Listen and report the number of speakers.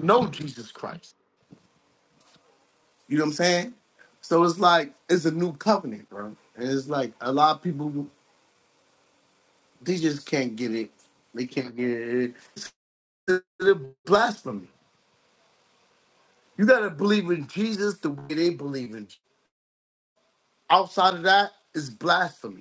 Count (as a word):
one